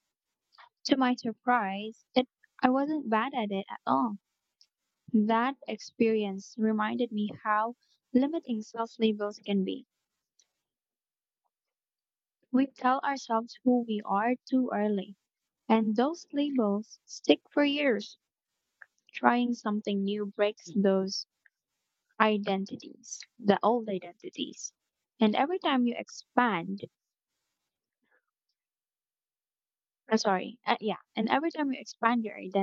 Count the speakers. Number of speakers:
1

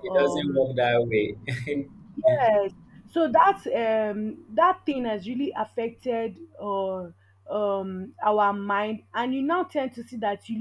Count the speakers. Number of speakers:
2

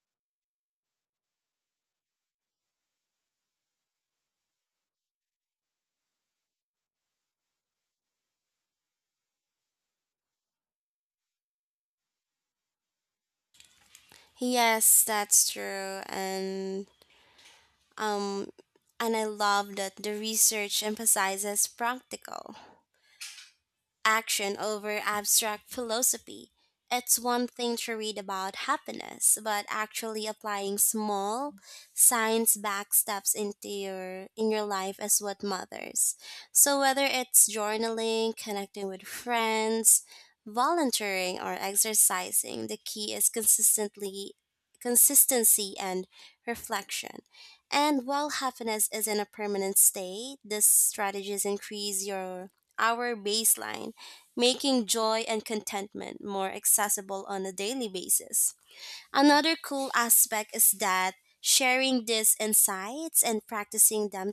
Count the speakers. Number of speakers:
1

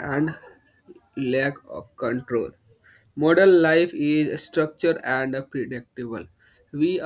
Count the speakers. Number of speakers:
1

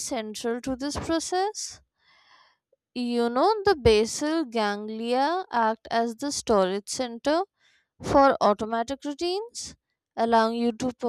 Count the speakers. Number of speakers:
1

